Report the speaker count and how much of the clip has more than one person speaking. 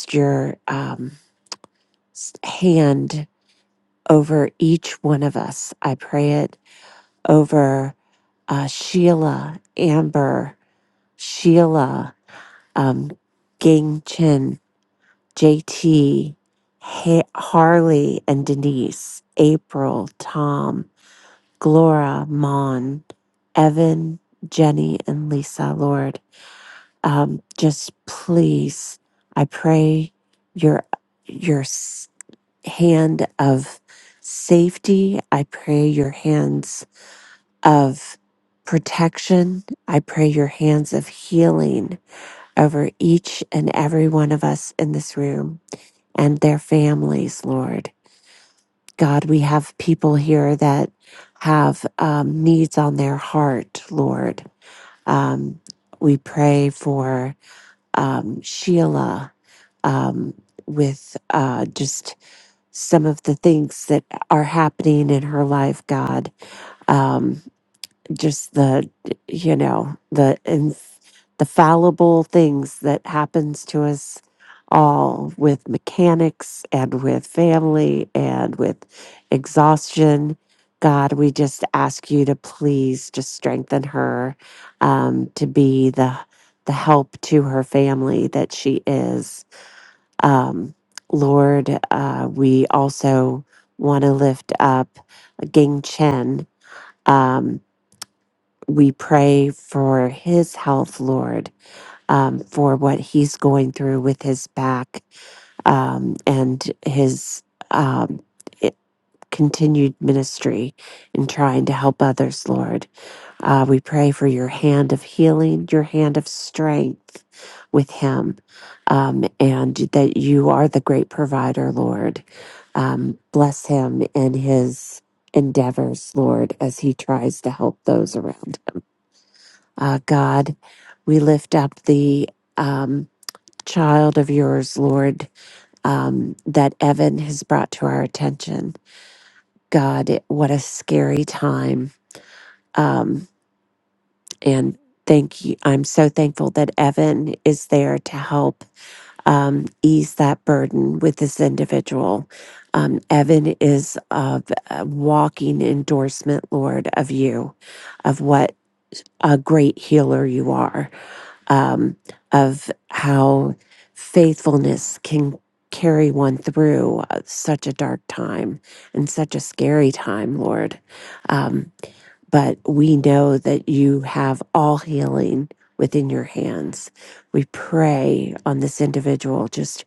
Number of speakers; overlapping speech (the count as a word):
one, no overlap